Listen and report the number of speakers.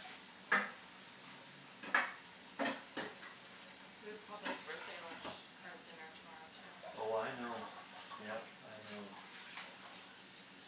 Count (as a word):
two